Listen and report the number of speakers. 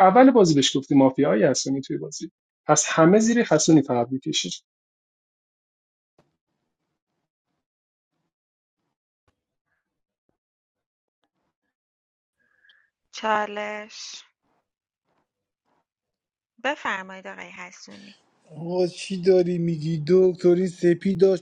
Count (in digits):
3